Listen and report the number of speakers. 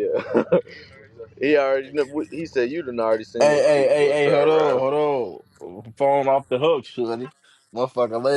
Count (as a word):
two